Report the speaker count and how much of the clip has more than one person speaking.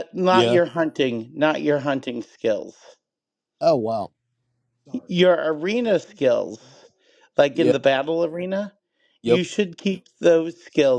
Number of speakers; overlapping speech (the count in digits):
2, about 5%